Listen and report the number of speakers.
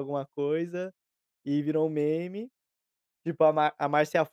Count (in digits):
1